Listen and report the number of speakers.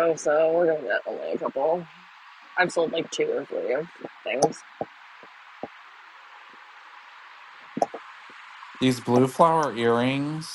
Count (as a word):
two